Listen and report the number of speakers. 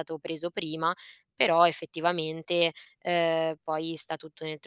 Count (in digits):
1